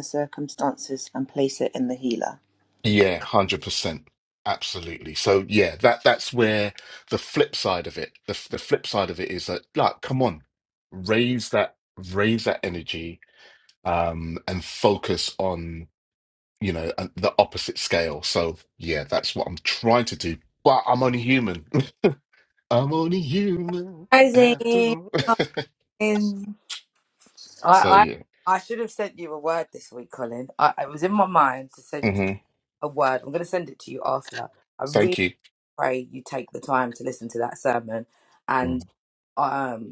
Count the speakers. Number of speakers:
three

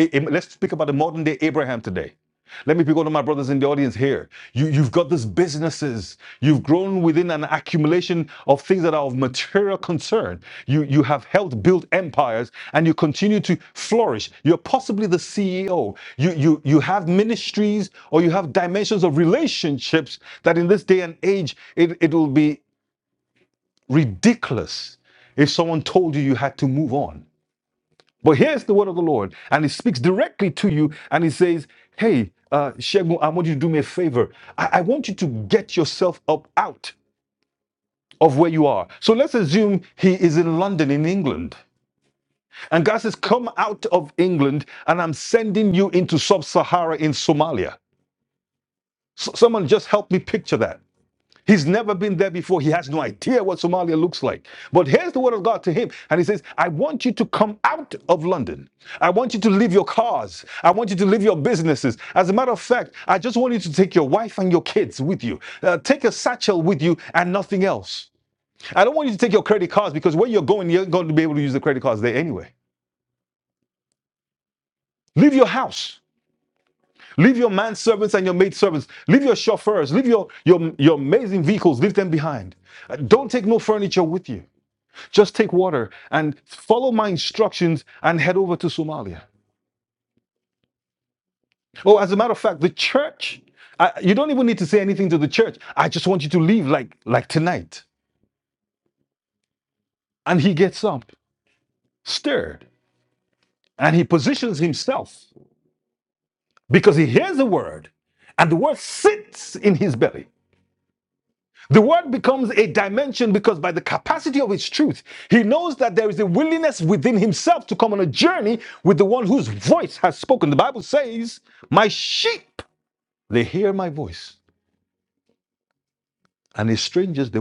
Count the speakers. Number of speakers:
one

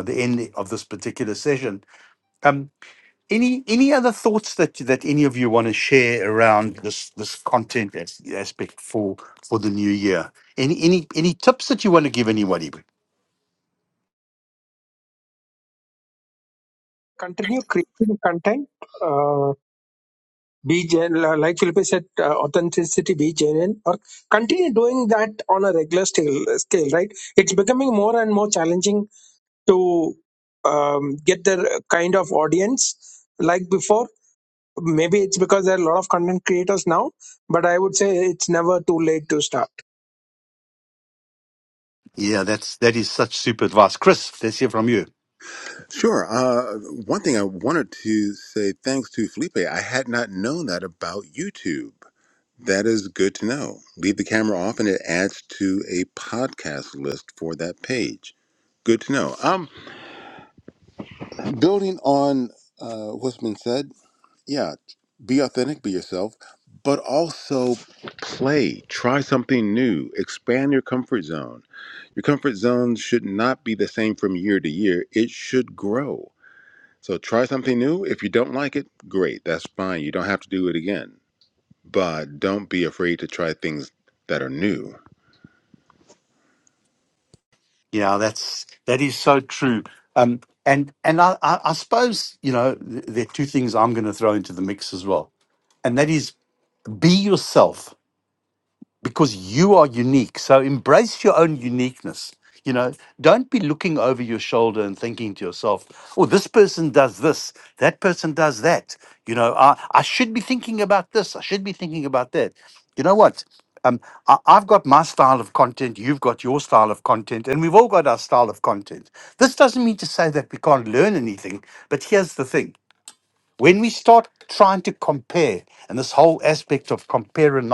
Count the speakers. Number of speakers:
three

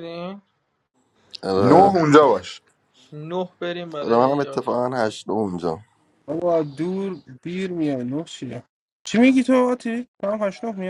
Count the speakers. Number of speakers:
four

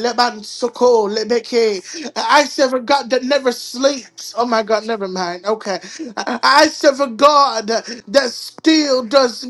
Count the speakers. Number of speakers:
one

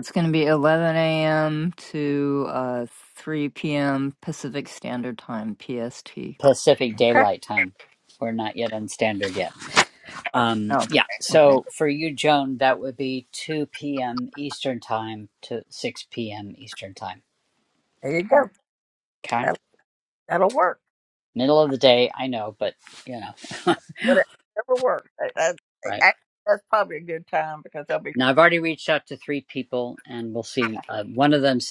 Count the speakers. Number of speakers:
three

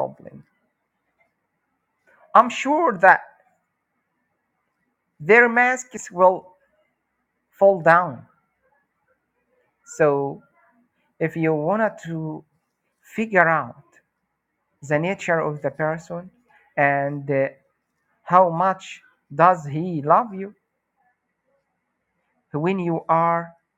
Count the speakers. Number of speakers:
one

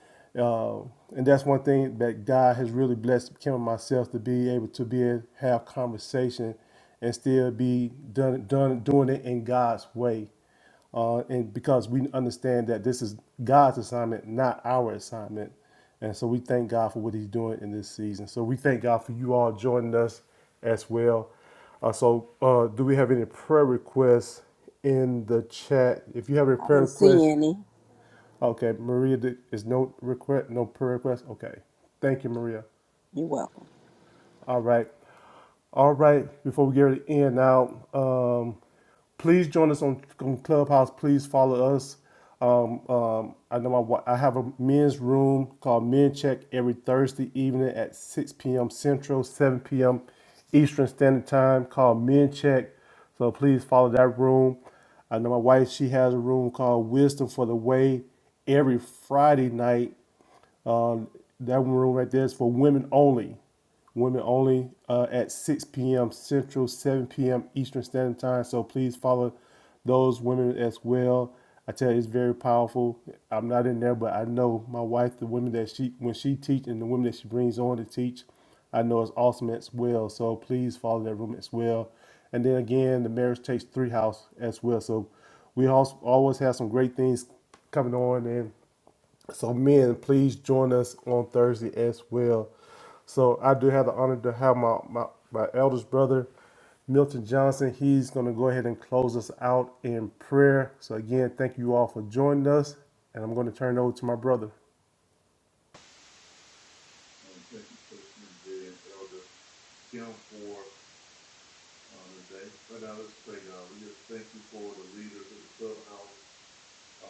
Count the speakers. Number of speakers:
three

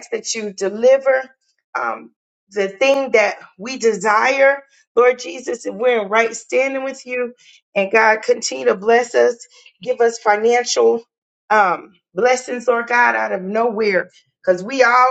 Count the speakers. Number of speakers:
one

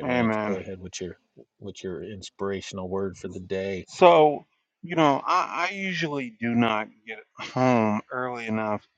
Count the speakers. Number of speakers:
two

